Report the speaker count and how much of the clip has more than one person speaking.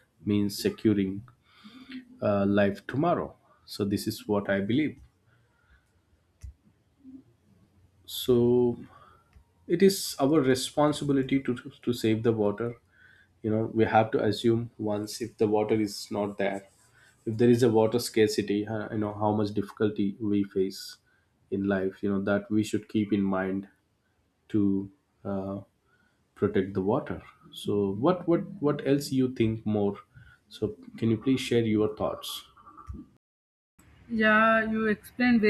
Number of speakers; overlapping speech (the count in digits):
2, no overlap